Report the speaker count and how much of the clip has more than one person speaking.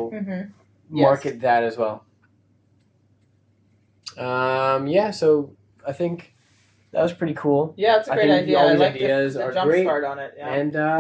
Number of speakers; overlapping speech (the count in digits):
2, about 20%